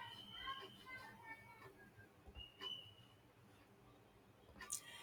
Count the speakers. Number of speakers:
0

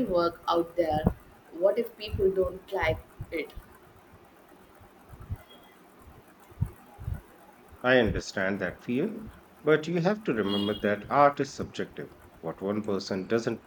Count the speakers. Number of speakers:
2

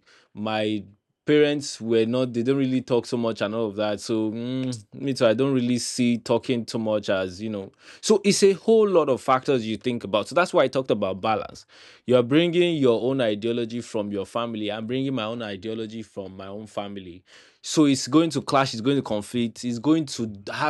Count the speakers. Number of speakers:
1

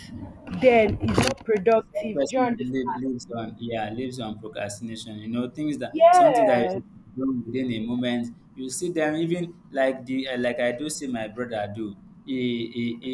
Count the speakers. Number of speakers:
2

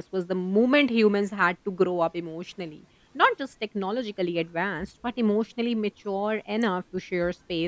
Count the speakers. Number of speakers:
1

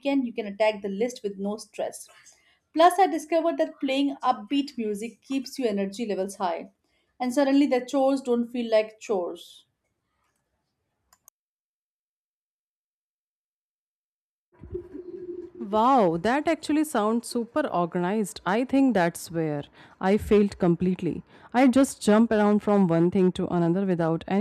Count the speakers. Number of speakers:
2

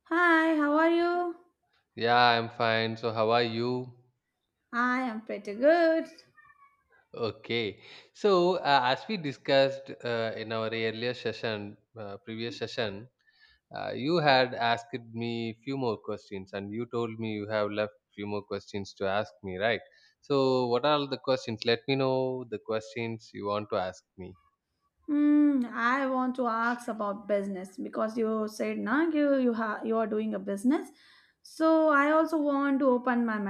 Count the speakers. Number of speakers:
2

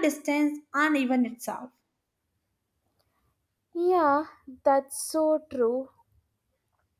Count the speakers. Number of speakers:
2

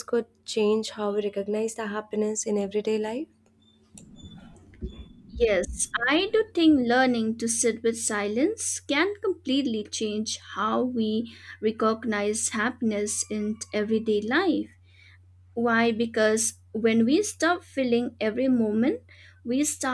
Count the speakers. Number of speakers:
2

